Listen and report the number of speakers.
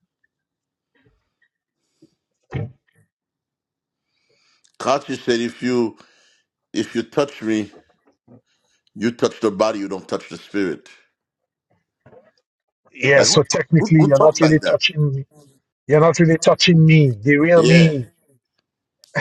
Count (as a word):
two